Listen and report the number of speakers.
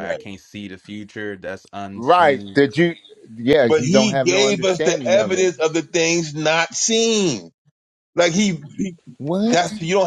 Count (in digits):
3